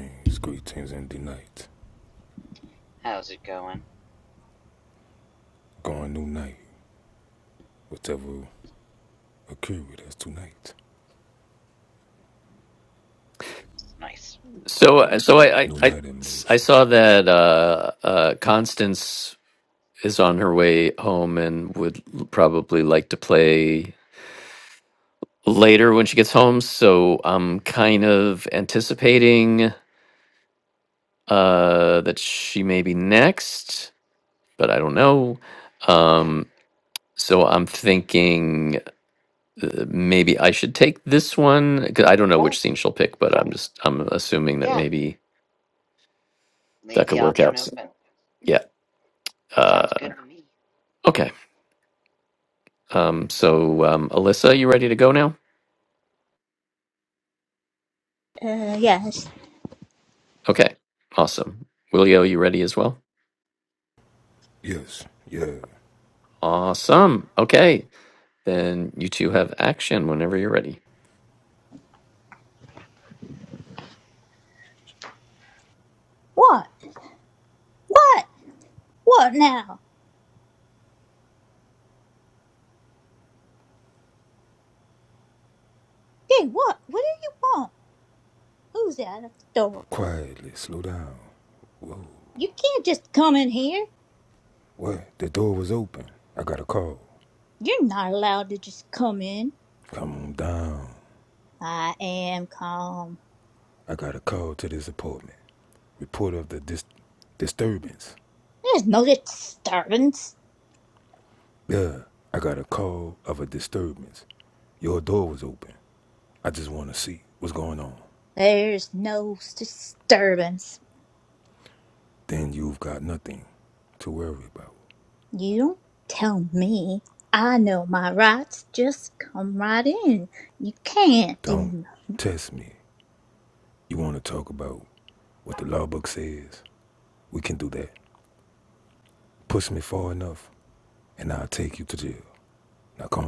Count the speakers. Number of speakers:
4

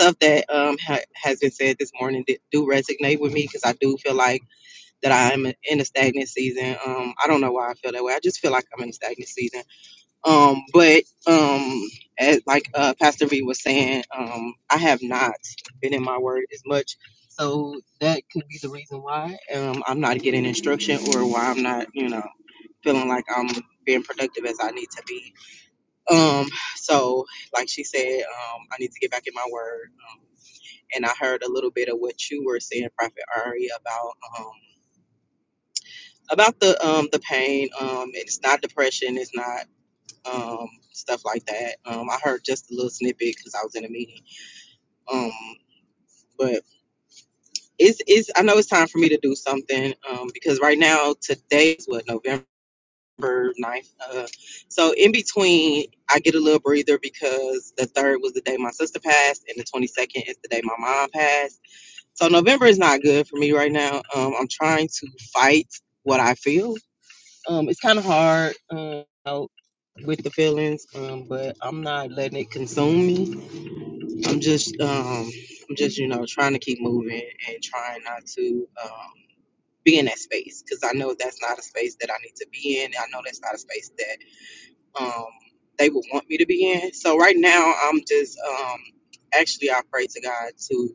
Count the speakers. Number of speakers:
1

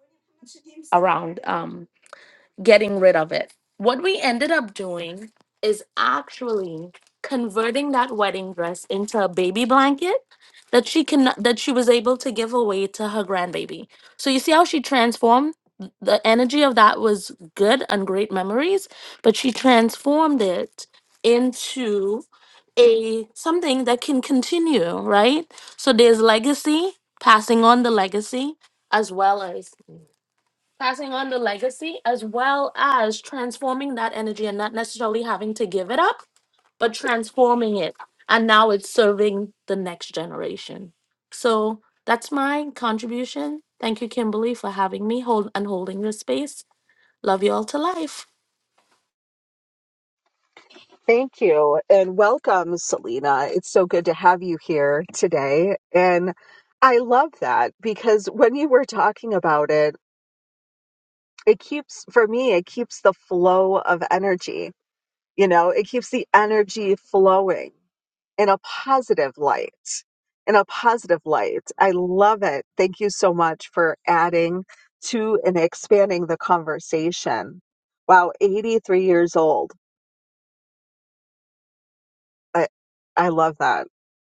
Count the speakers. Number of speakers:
2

